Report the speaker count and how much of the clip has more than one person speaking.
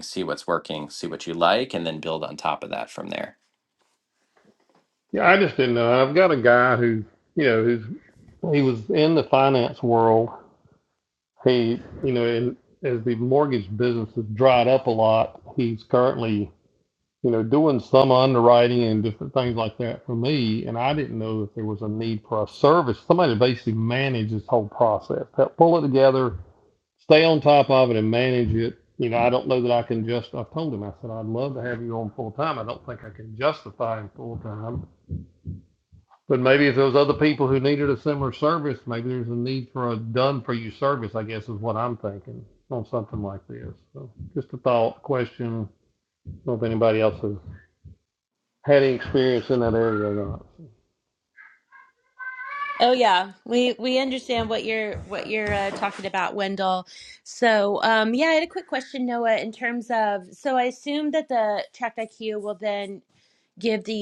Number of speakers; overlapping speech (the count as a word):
three, no overlap